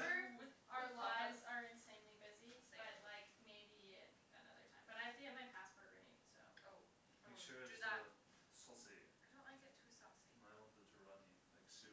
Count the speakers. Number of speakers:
3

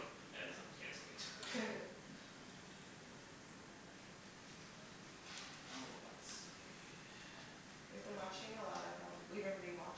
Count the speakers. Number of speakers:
2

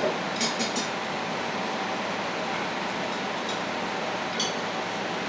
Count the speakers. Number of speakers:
0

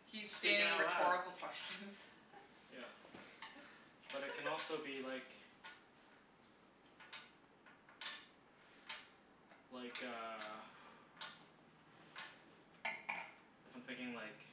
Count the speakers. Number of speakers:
2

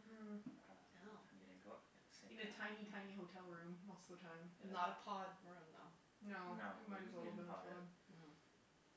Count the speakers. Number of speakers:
3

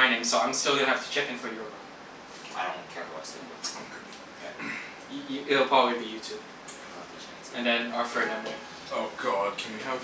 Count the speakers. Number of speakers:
3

